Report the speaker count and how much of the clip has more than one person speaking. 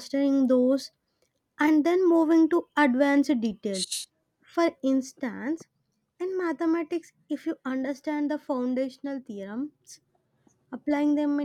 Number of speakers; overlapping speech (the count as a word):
one, no overlap